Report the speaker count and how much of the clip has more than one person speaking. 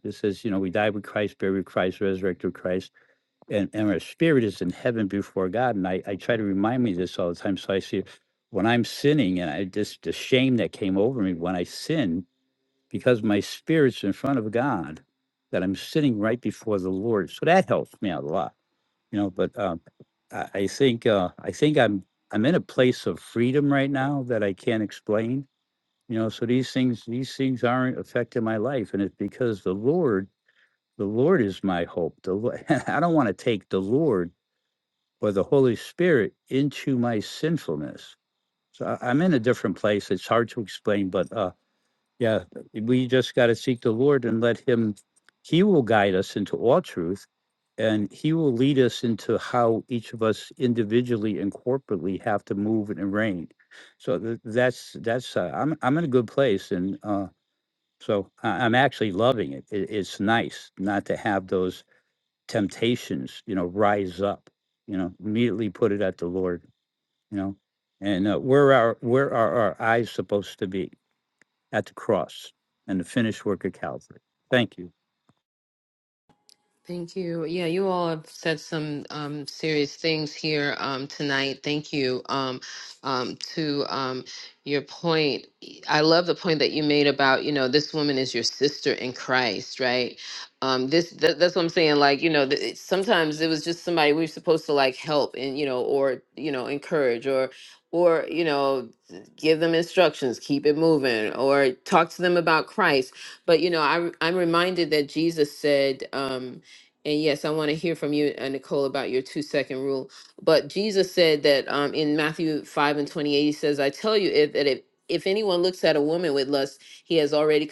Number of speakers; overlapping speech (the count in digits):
2, no overlap